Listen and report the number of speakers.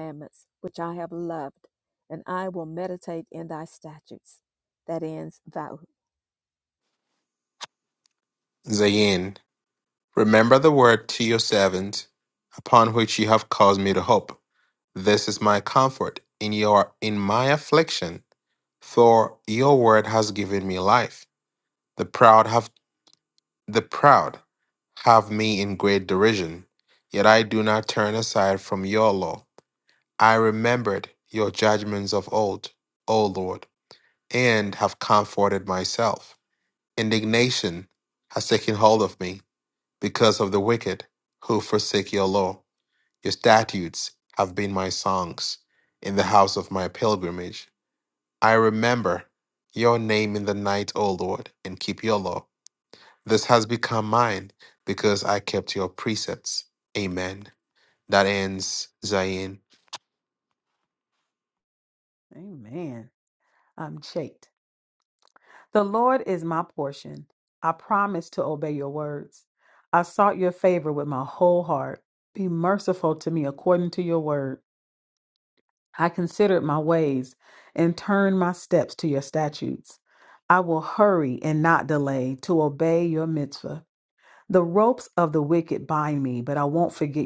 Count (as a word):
three